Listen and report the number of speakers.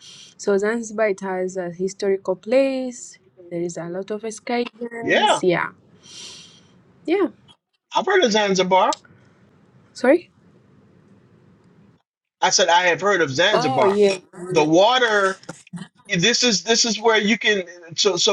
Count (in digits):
2